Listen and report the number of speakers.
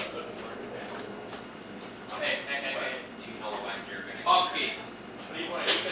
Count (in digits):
3